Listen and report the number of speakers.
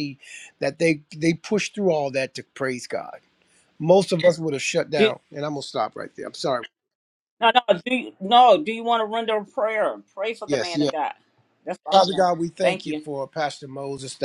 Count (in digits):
2